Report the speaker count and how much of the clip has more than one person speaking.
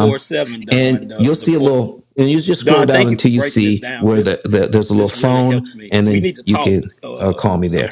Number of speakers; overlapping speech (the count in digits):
2, about 62%